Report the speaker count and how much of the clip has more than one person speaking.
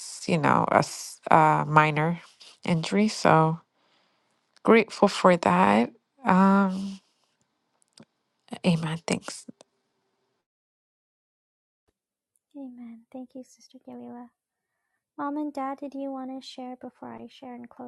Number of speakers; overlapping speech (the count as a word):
two, no overlap